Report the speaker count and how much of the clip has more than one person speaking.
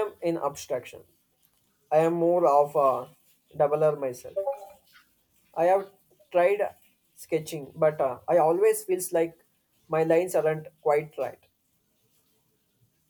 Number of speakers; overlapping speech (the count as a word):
one, no overlap